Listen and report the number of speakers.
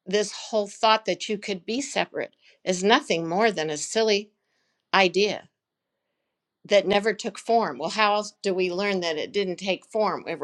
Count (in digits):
1